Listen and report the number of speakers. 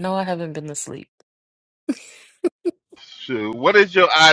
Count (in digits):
2